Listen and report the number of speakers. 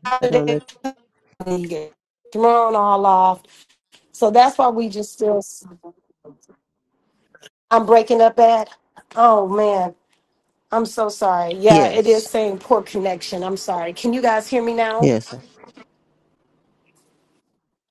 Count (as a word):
two